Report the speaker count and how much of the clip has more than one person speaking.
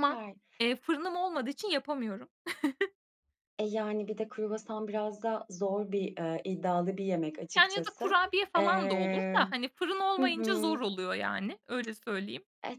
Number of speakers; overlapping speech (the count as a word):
two, about 18%